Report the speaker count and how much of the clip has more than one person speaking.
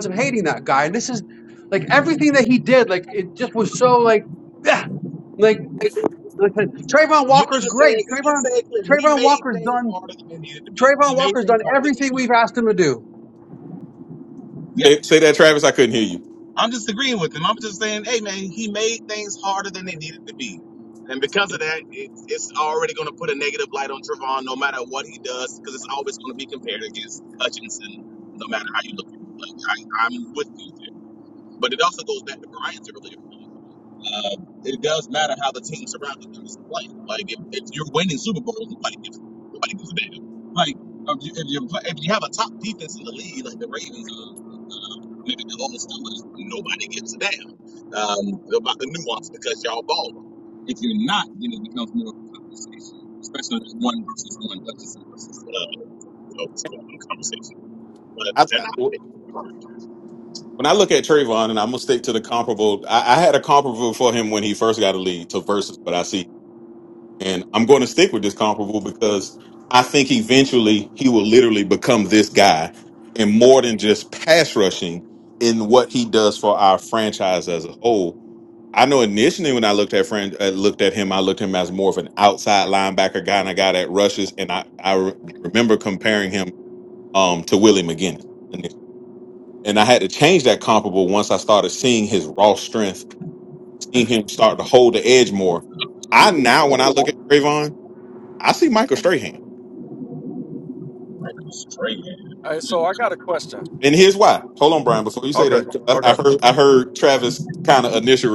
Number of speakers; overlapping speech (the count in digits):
4, about 5%